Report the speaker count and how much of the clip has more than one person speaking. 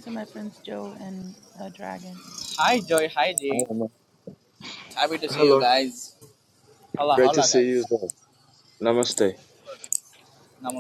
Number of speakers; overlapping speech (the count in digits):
3, about 10%